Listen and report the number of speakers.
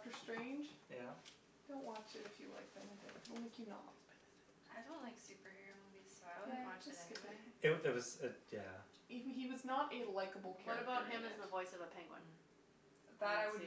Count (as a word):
four